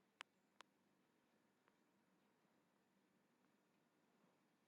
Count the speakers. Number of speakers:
0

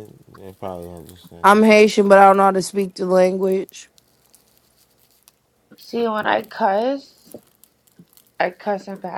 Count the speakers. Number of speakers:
3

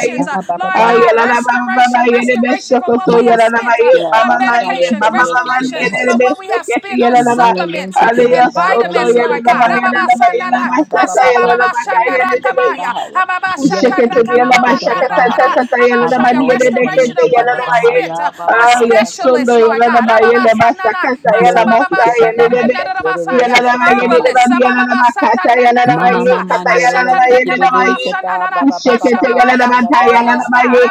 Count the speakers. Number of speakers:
3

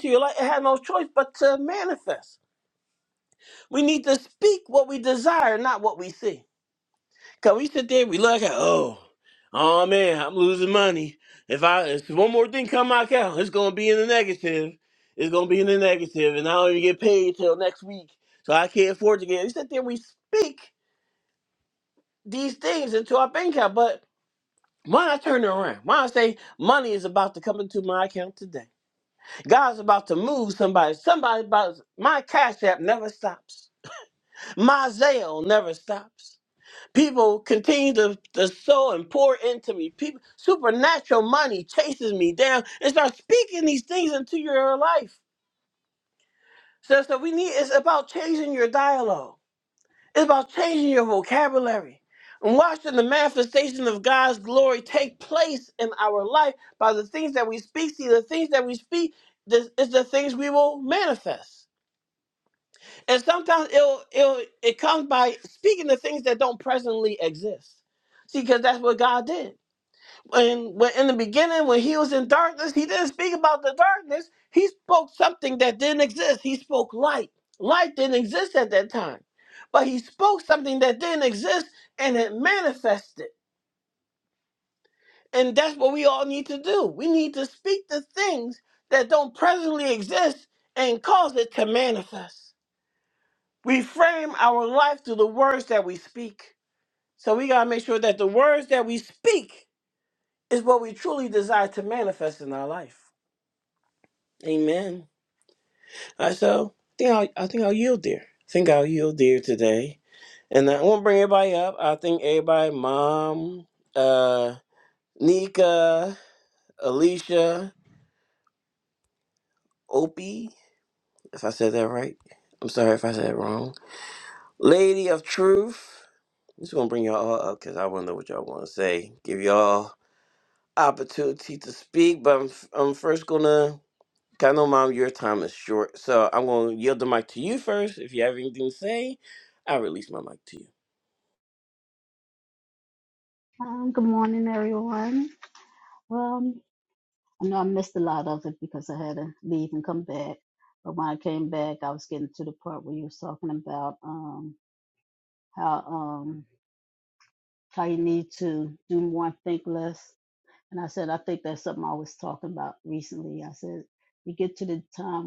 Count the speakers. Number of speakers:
2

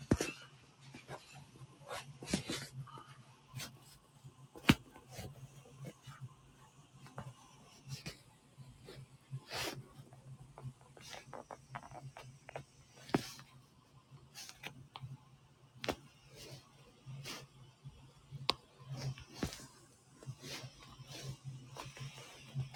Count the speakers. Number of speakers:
0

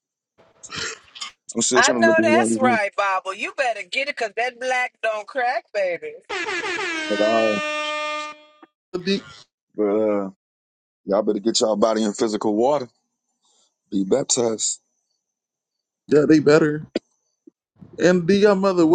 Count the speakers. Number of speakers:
3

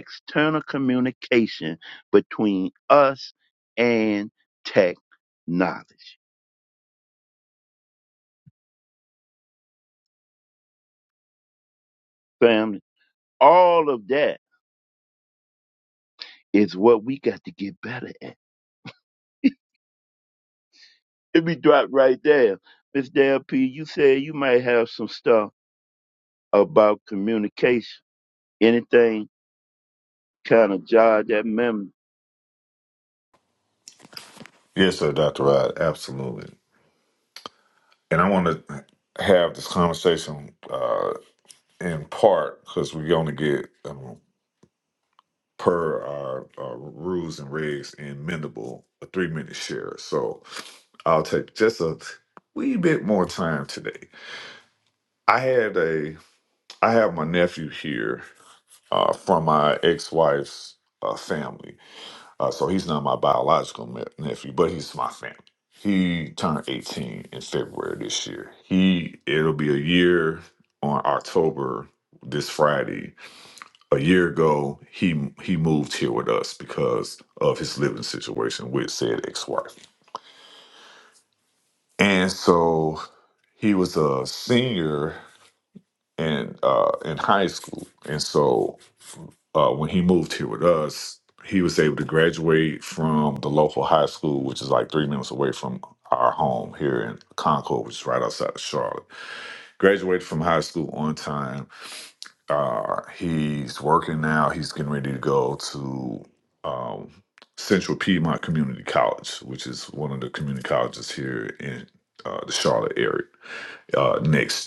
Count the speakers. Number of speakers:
2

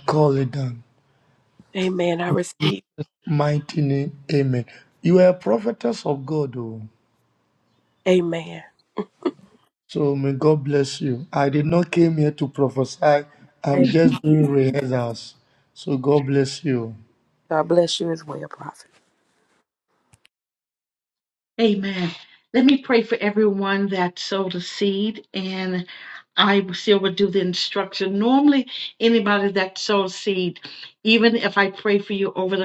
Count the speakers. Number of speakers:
3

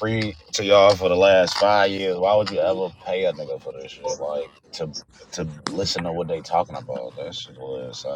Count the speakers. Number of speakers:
1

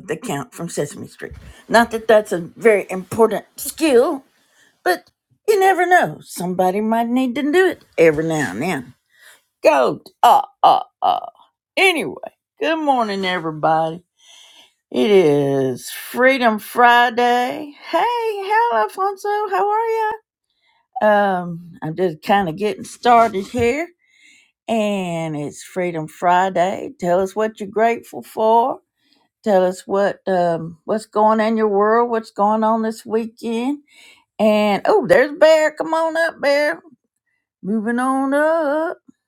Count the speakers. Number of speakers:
1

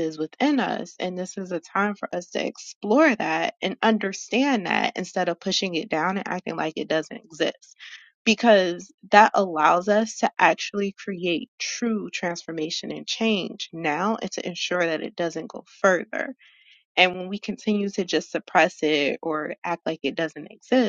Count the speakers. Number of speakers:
1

